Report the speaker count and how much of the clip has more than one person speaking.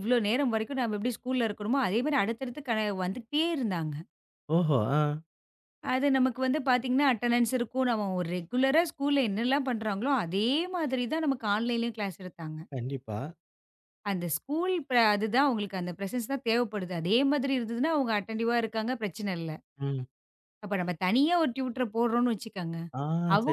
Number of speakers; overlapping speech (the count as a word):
two, under 1%